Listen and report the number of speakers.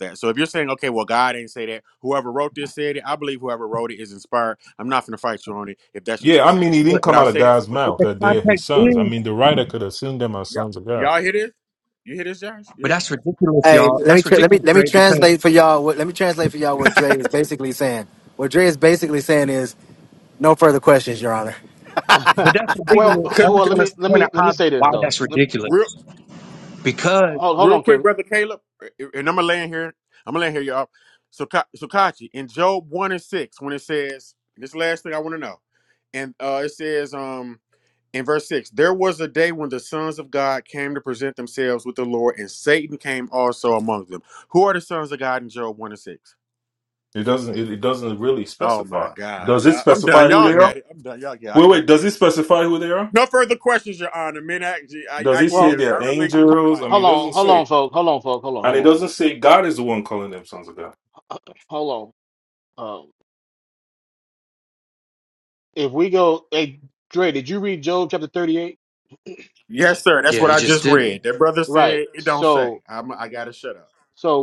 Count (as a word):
five